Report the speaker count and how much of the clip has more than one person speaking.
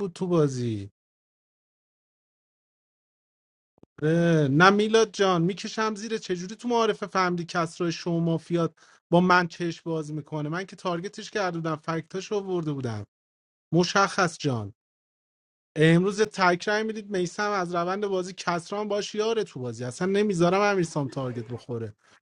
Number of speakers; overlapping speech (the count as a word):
one, no overlap